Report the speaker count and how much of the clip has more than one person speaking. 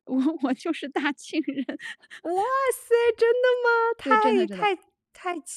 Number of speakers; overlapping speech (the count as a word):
two, about 11%